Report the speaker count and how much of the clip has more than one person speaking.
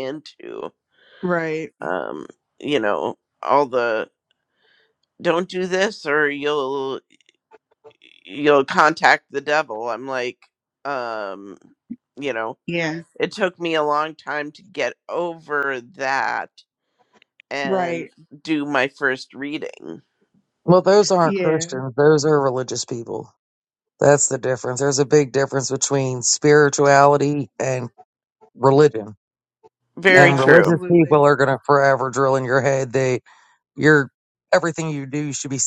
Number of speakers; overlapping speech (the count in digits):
3, about 5%